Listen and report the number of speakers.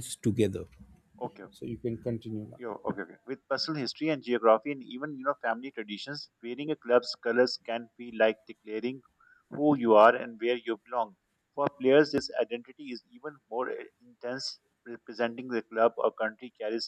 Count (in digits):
2